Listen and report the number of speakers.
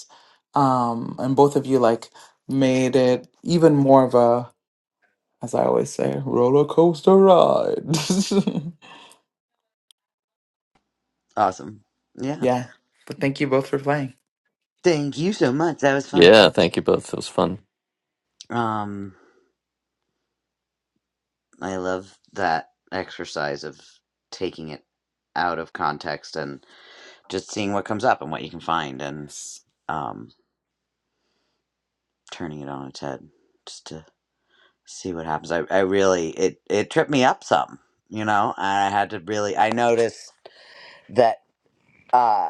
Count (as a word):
three